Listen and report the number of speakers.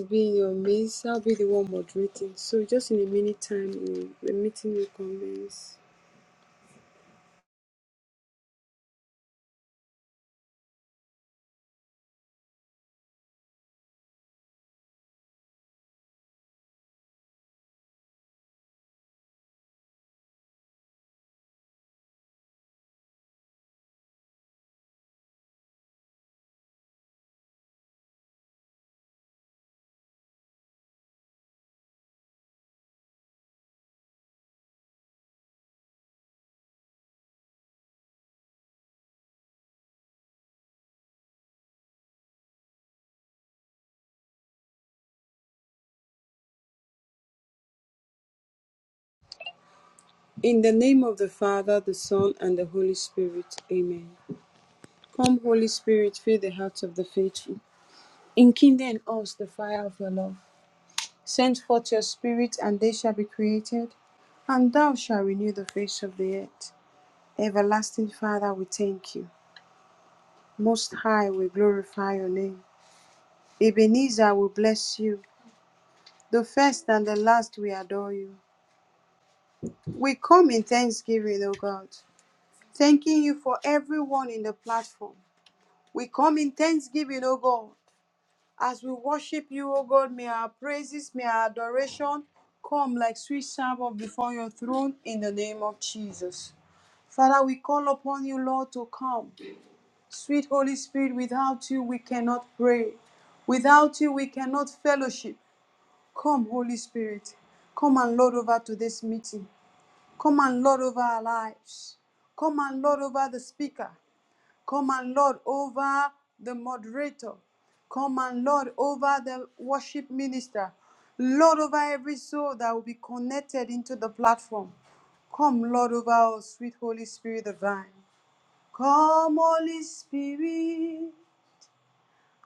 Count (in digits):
1